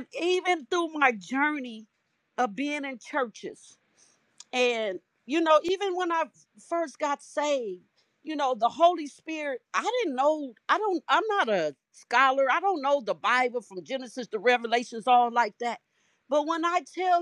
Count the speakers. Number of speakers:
one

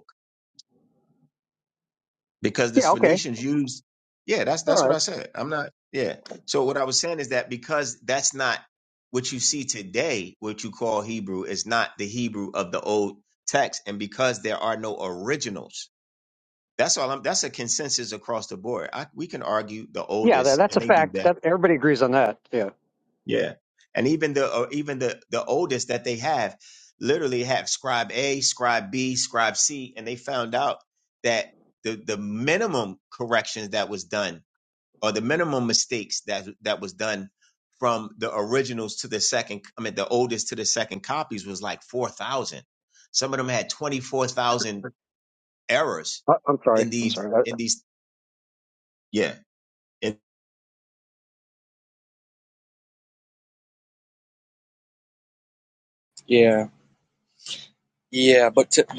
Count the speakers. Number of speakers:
three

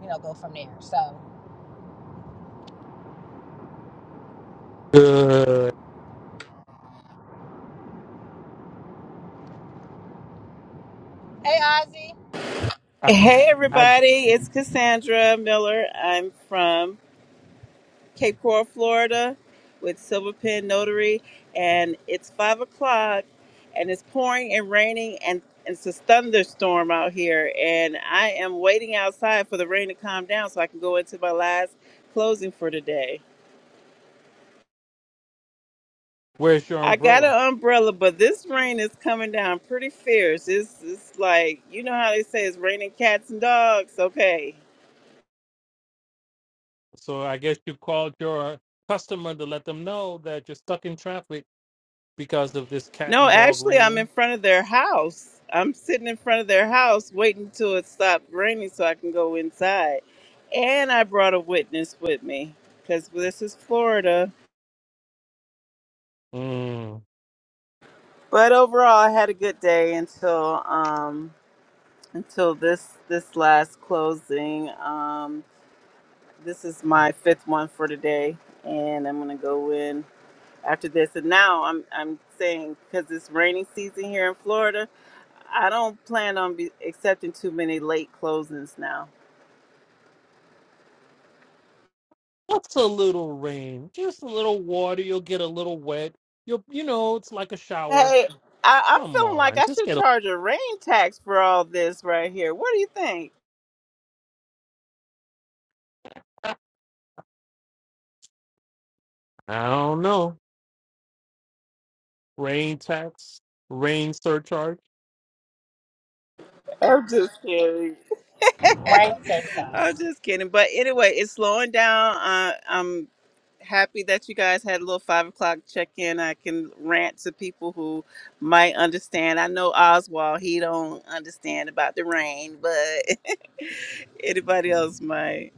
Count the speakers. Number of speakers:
three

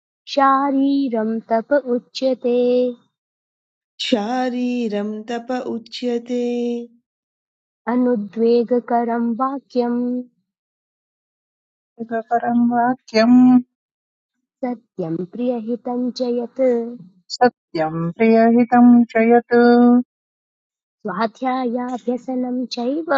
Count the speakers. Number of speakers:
three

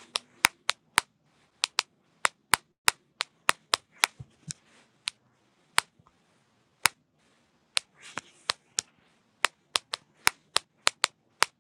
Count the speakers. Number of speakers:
zero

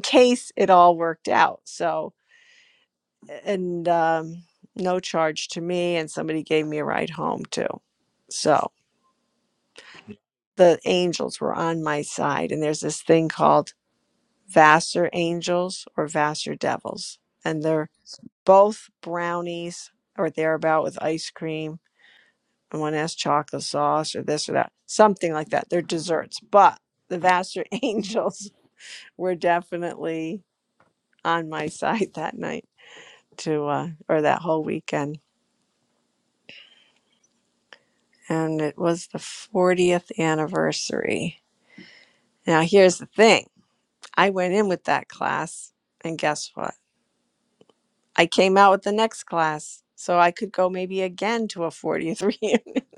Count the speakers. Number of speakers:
one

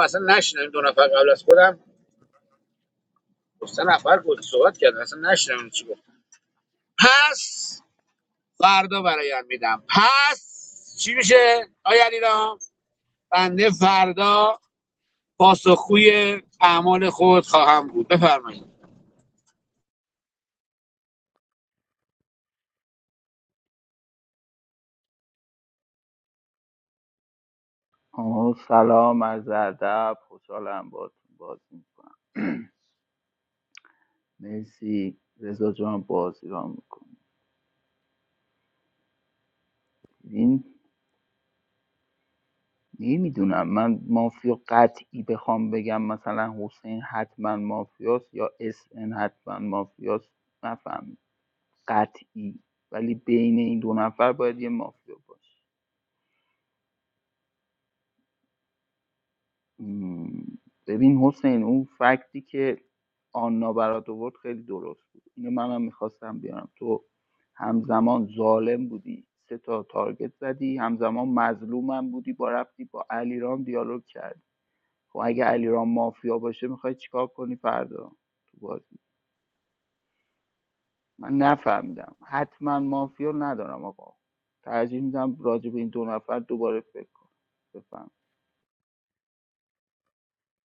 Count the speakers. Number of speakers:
two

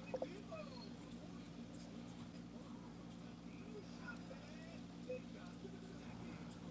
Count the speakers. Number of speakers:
zero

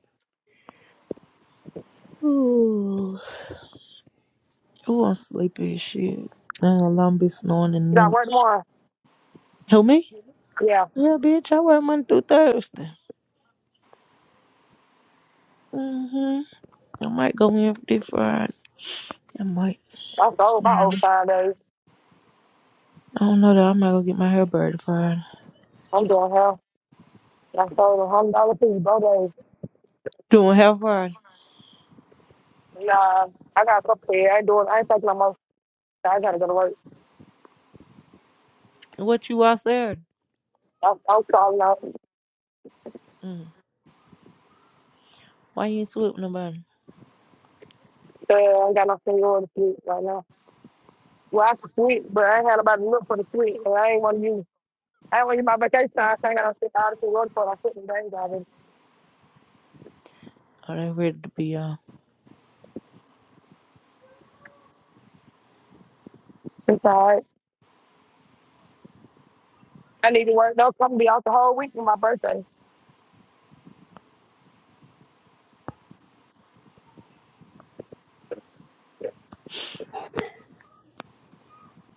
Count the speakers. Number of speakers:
two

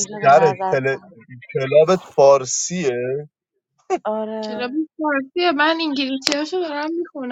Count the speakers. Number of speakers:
three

